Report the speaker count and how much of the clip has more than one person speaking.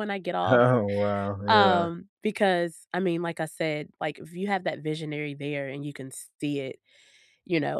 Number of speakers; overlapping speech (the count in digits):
2, about 8%